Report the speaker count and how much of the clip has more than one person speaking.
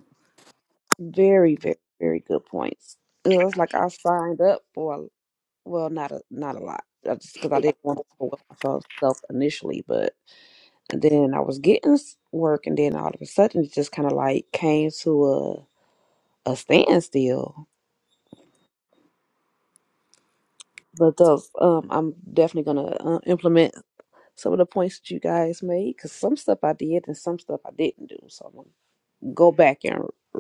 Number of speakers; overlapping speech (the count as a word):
one, no overlap